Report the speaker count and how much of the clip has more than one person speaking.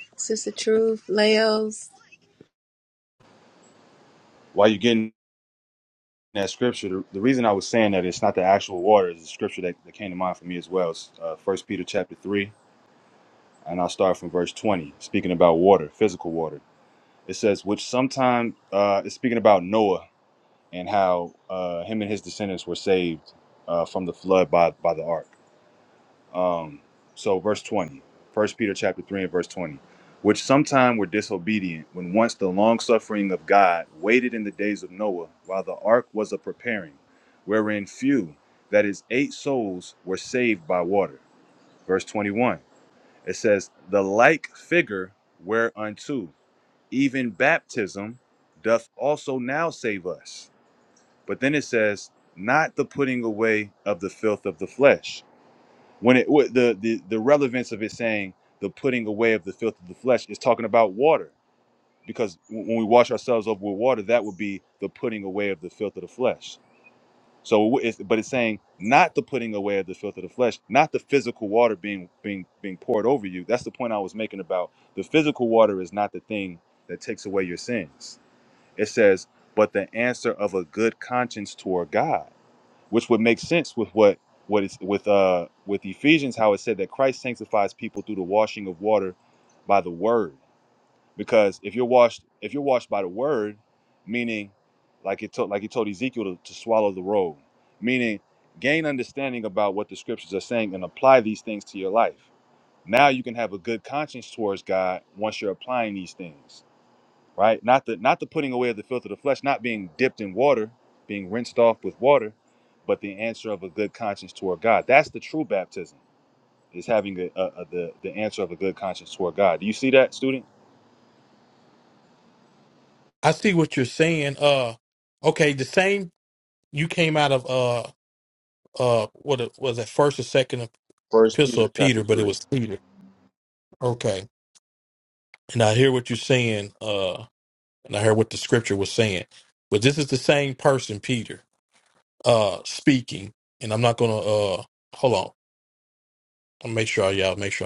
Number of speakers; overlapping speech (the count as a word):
three, about 1%